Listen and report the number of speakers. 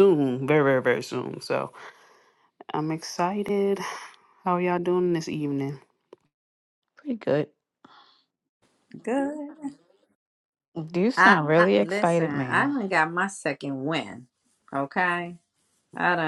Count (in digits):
3